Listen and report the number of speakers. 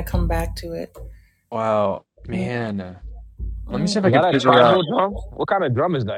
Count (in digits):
3